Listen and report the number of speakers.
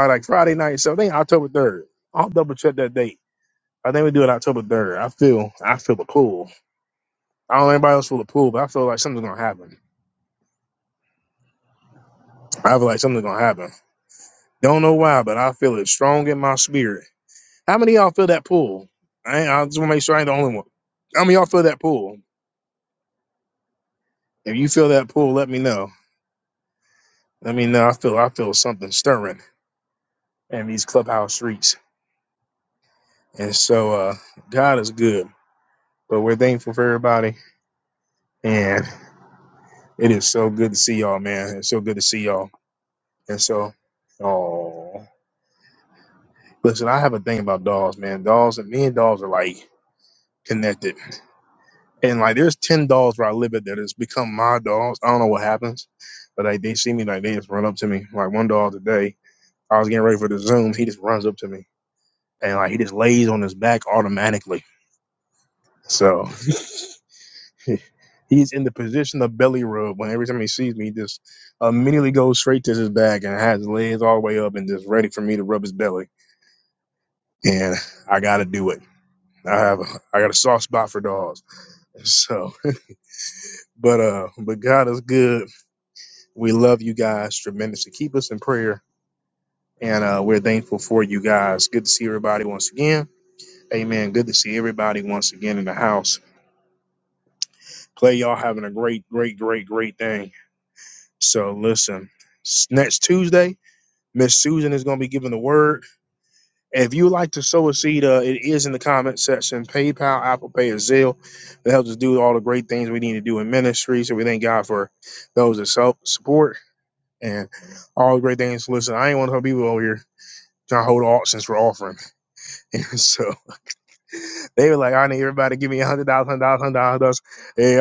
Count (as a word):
one